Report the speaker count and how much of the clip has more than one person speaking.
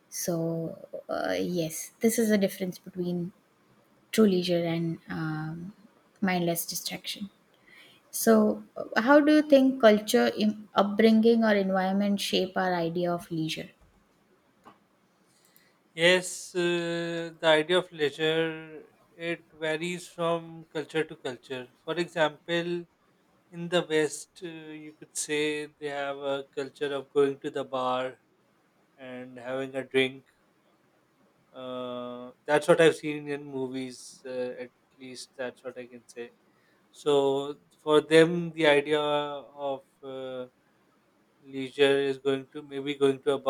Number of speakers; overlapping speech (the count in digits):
2, no overlap